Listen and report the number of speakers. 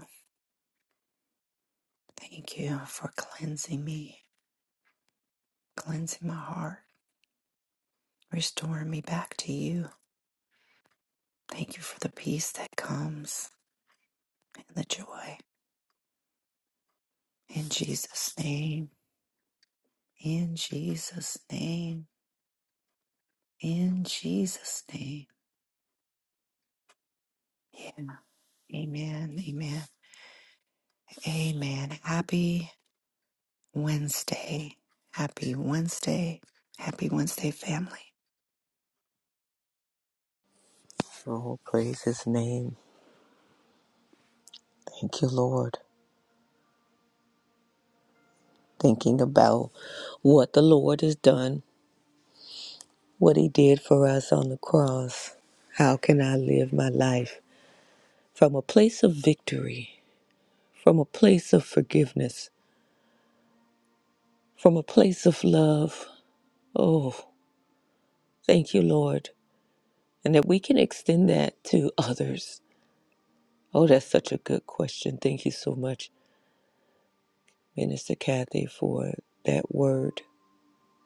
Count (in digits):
2